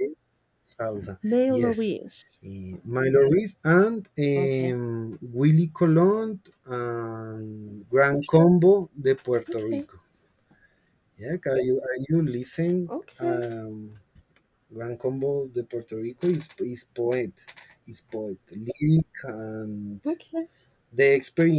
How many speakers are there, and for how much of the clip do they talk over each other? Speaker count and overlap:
two, about 6%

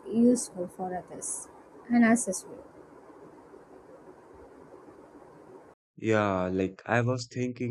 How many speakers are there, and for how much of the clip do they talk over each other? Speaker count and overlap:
two, no overlap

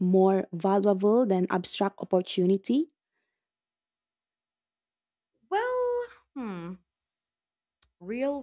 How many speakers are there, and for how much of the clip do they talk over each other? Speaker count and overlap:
two, no overlap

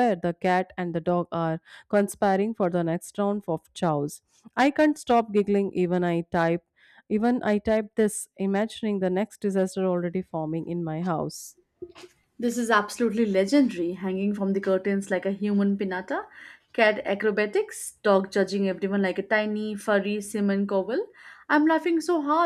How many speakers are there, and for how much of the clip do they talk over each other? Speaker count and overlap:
two, no overlap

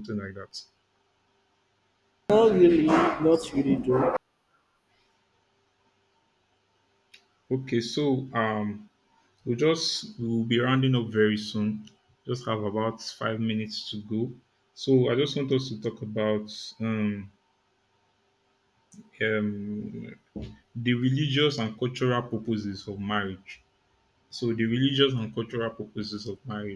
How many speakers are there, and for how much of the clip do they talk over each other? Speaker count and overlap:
two, no overlap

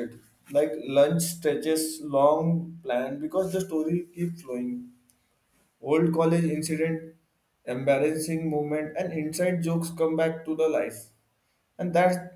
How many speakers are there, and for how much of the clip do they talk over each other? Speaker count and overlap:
one, no overlap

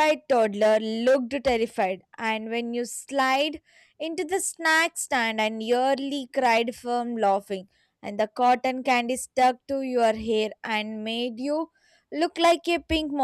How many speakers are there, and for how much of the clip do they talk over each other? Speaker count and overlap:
one, no overlap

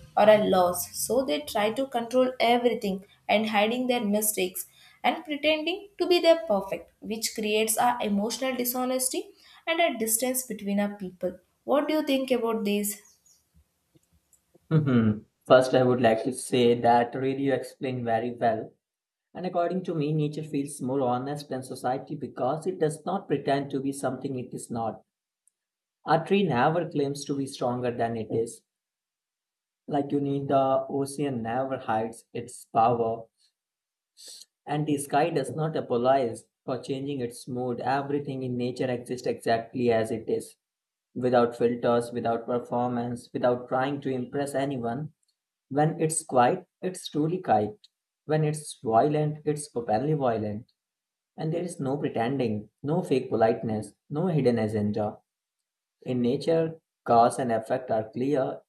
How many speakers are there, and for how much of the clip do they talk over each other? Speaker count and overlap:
two, no overlap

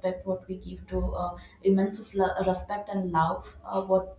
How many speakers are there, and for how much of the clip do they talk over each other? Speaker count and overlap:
one, no overlap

